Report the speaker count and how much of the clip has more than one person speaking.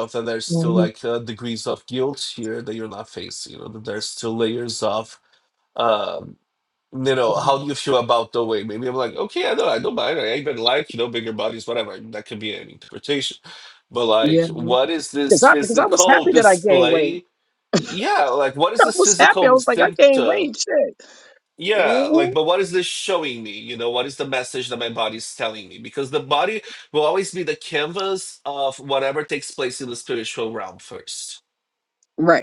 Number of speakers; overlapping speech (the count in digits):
2, about 15%